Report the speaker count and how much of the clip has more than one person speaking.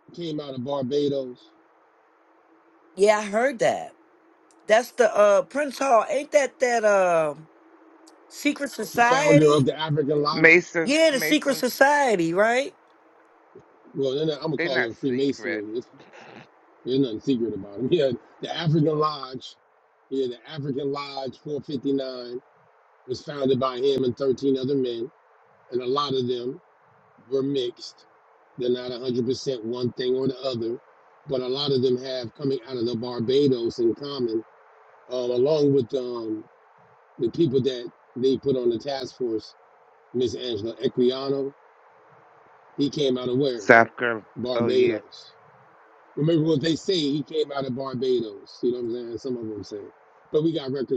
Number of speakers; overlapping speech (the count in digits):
3, about 7%